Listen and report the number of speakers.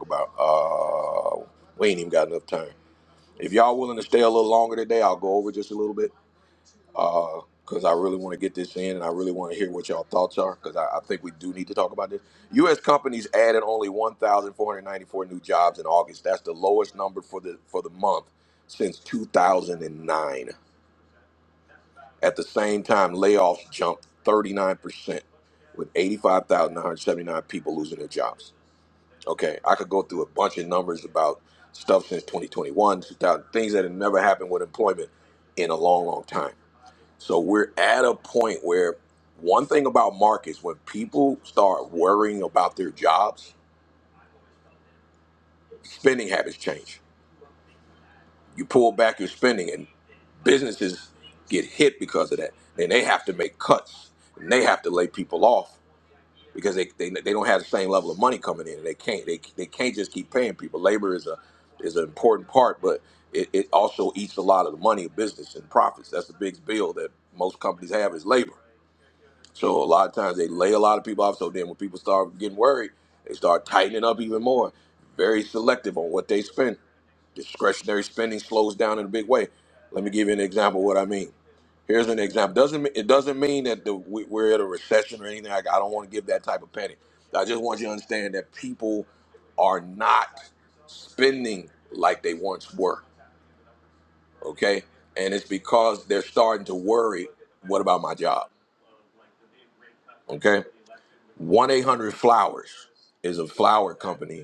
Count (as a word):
one